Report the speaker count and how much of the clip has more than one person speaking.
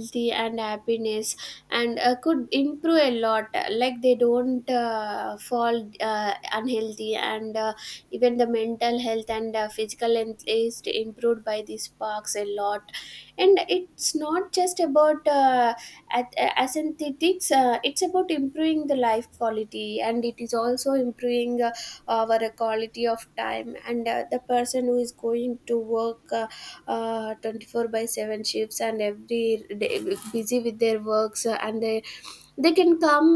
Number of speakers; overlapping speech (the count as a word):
one, no overlap